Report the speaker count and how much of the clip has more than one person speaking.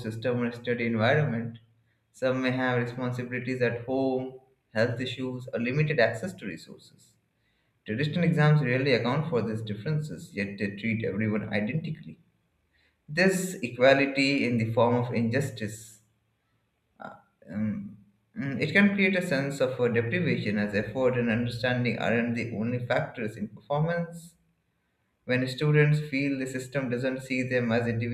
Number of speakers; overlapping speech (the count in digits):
1, no overlap